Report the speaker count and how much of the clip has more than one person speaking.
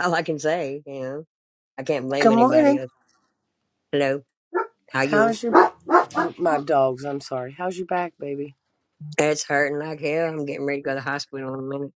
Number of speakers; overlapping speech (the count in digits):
2, about 8%